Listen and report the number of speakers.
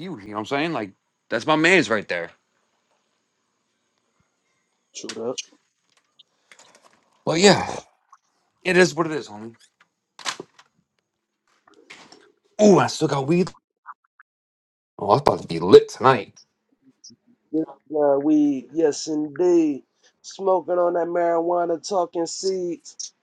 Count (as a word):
two